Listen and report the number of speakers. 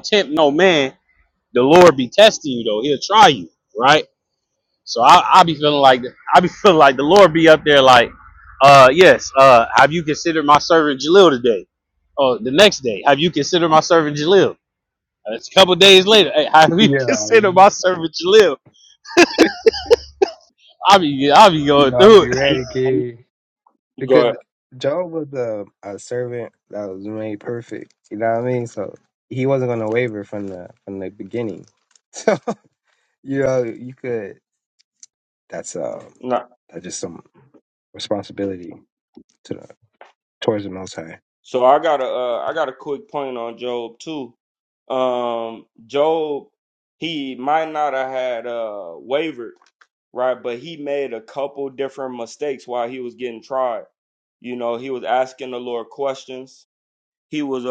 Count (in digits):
3